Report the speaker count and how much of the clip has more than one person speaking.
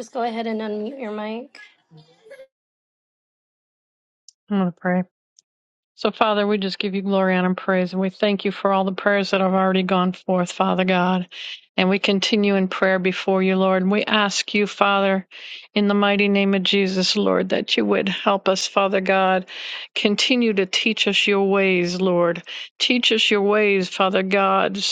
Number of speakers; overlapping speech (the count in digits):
2, no overlap